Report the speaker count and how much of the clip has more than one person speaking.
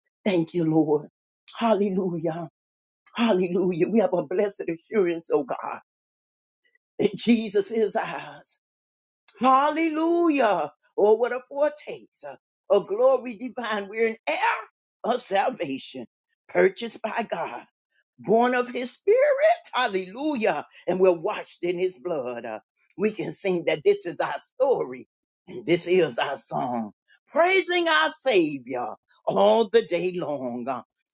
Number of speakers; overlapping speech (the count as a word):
one, no overlap